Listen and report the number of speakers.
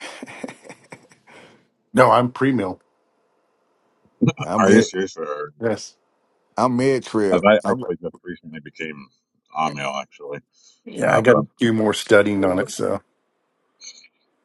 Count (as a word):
three